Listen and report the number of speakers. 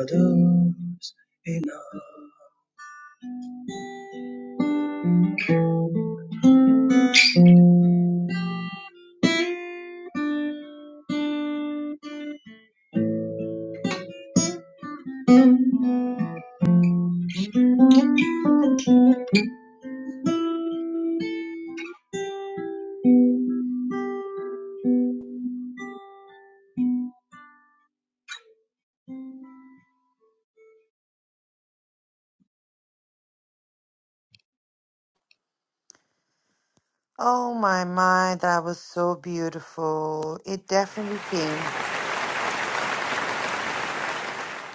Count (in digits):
2